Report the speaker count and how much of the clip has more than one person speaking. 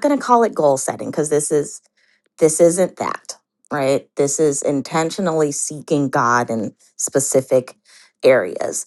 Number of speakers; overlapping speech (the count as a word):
one, no overlap